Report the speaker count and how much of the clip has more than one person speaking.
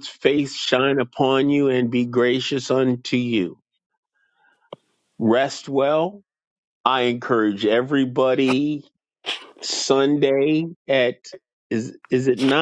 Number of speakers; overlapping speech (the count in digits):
1, no overlap